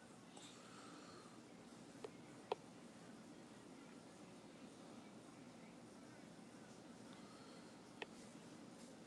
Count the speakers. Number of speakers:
0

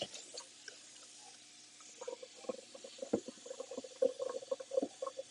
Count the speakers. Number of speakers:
0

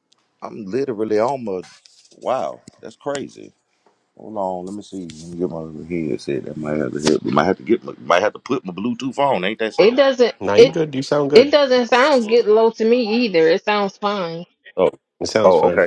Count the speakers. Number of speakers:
3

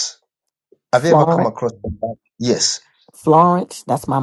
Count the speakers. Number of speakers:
2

